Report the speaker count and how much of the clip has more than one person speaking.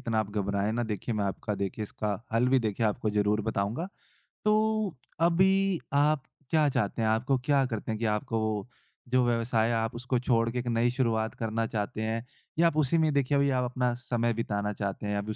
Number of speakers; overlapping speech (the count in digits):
1, no overlap